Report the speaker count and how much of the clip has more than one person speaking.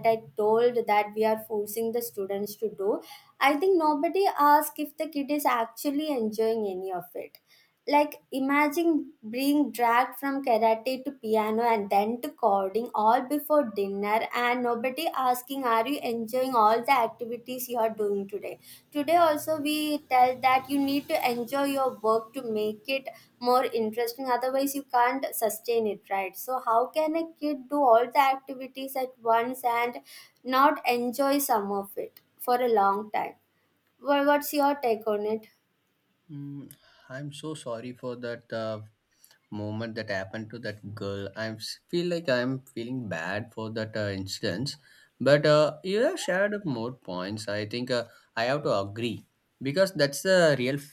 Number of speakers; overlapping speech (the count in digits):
2, no overlap